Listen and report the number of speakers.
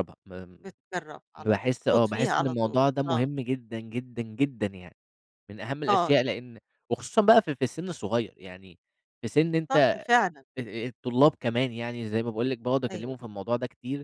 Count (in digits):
2